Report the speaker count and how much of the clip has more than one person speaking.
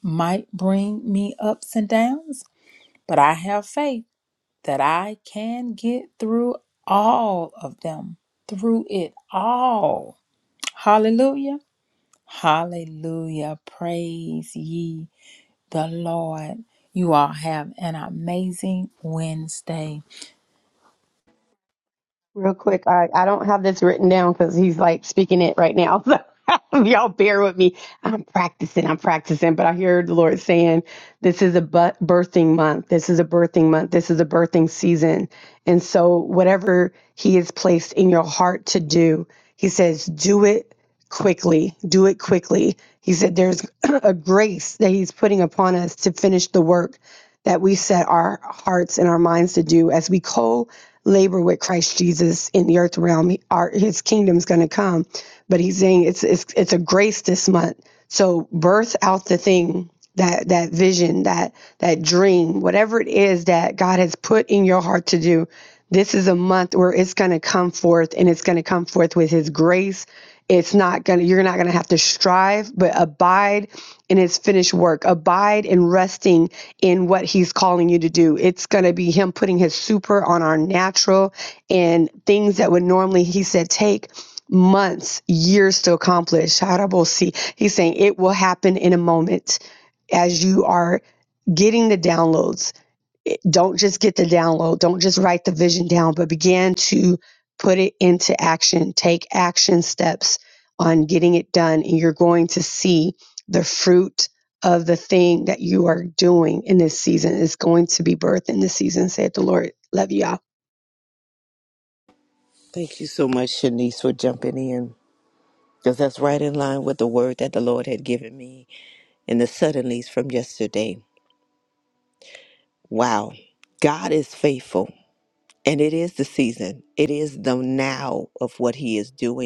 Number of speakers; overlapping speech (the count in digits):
3, no overlap